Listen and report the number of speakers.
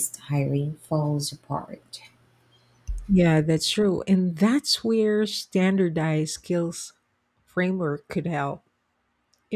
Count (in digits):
2